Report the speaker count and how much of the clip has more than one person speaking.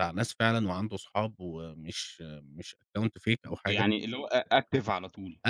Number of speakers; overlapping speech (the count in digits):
2, about 3%